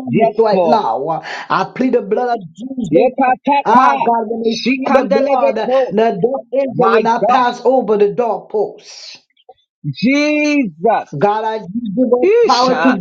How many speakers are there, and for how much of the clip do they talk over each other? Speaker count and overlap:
two, about 27%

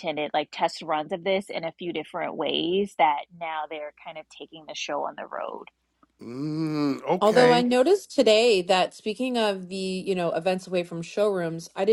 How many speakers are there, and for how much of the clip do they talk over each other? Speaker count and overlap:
three, about 4%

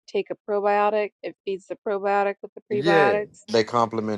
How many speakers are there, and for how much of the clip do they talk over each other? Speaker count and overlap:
two, about 13%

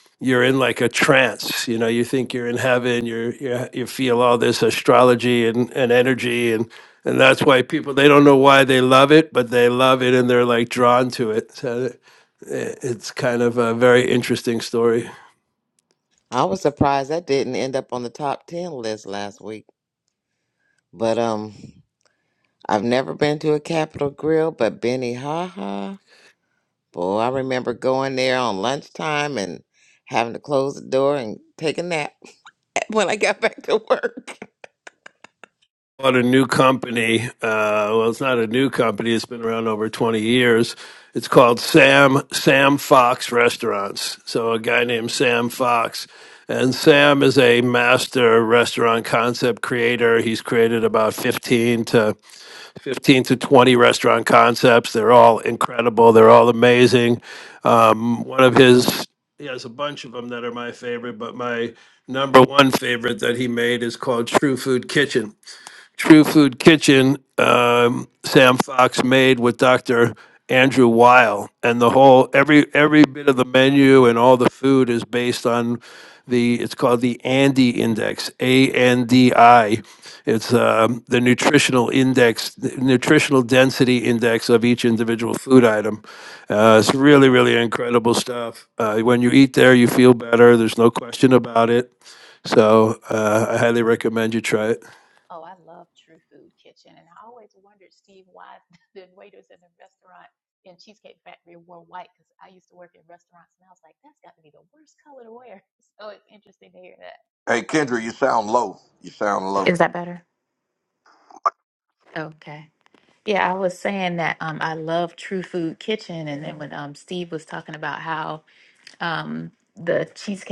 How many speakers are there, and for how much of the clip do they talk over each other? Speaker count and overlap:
four, under 1%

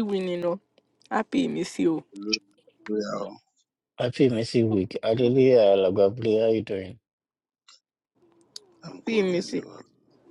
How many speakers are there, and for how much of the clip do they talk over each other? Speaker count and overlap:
three, about 6%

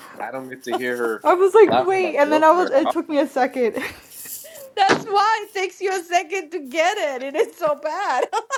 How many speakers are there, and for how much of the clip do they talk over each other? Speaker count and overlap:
three, about 16%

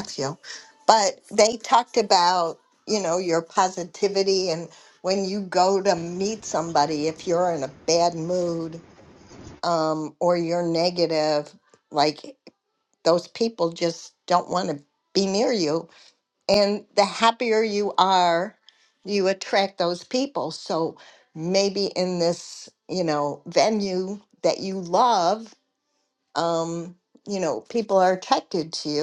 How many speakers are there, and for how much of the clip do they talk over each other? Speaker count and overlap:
one, no overlap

